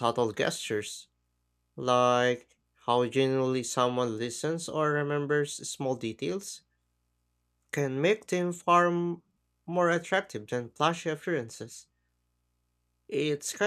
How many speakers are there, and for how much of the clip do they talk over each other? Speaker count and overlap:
1, no overlap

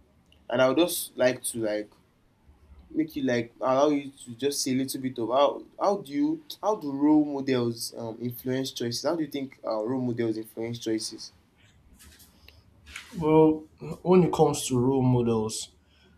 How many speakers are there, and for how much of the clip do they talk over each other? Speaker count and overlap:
2, no overlap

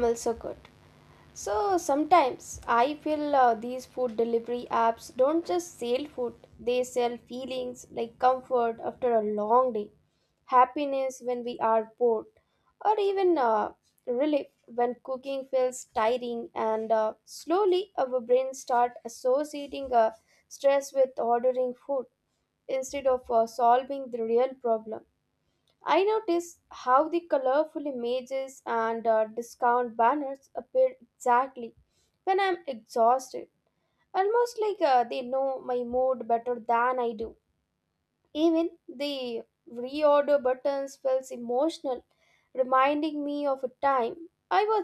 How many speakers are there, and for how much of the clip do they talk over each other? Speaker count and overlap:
1, no overlap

